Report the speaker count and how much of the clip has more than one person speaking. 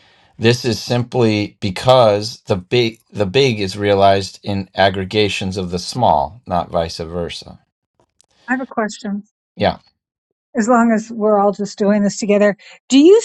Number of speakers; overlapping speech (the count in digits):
2, no overlap